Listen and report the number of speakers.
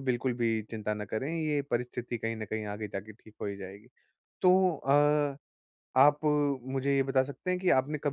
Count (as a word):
one